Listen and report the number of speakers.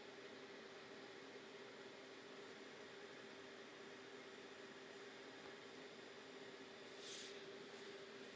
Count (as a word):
zero